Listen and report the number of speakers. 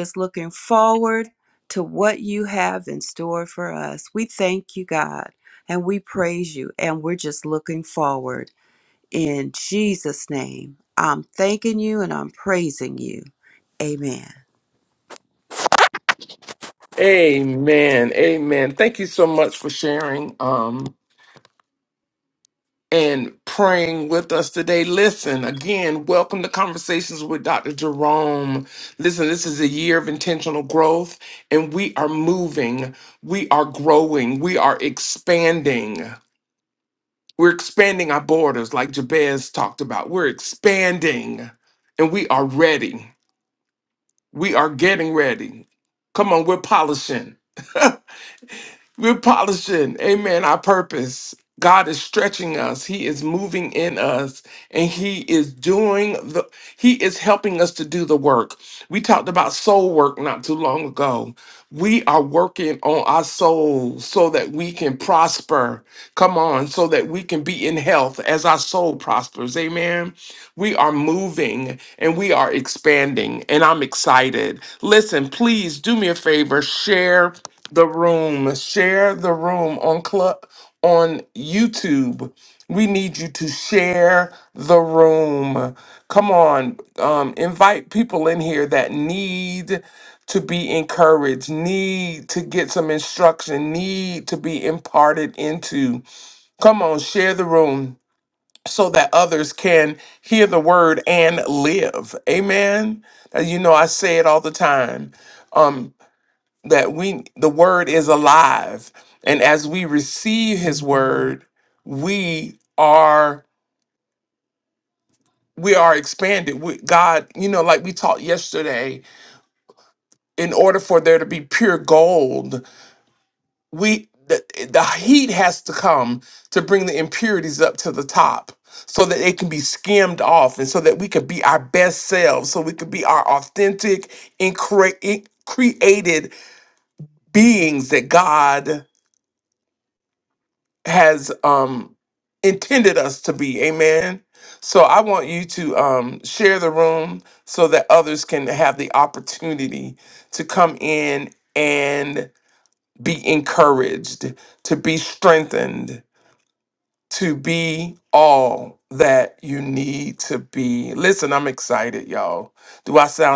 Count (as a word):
two